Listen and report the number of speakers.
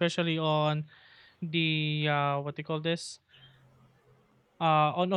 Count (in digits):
1